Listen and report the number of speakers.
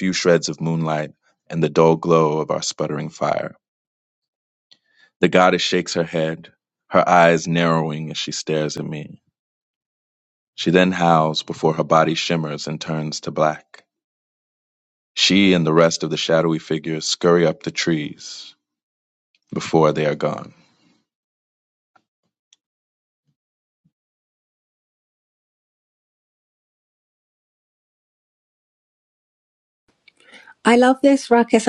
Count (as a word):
two